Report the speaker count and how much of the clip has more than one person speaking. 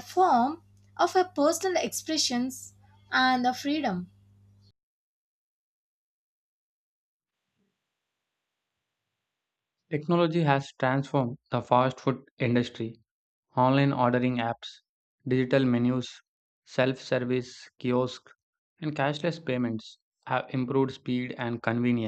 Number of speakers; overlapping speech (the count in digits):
2, no overlap